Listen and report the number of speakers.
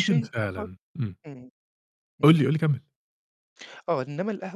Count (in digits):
2